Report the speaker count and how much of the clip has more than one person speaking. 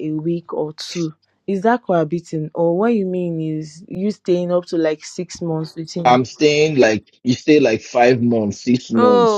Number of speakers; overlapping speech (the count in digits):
2, about 6%